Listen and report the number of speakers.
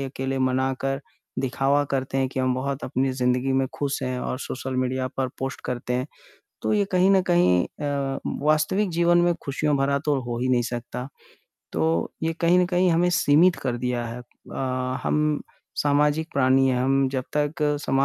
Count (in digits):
1